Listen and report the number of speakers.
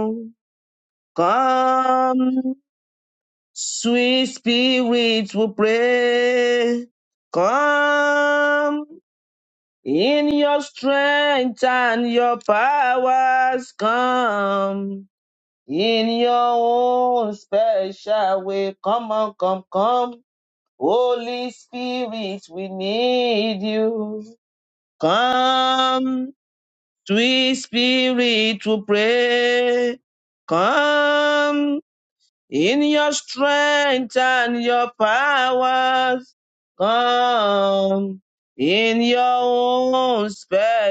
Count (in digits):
1